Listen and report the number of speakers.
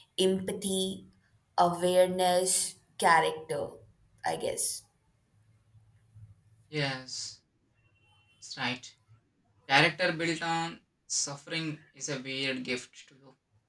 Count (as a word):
two